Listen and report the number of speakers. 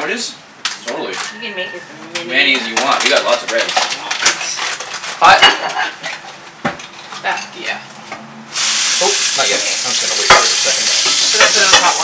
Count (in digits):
3